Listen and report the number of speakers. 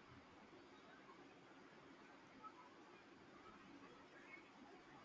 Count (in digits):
0